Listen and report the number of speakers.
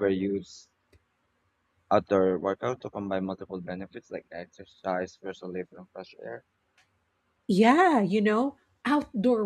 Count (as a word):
two